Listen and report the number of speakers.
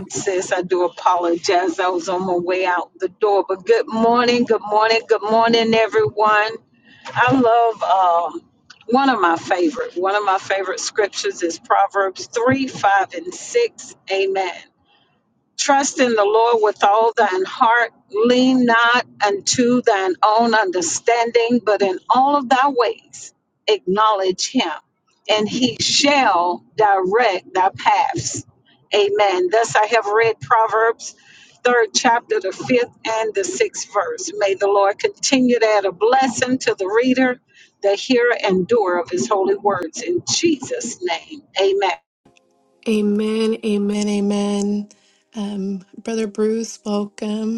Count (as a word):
two